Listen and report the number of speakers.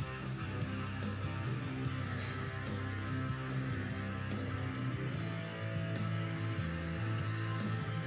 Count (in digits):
0